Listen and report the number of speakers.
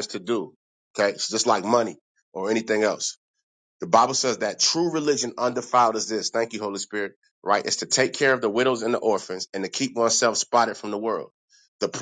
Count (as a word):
one